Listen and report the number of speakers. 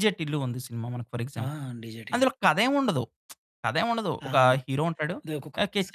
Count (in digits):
2